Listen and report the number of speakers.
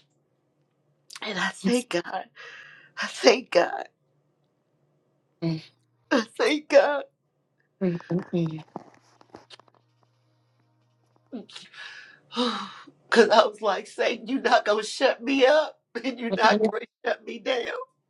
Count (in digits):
2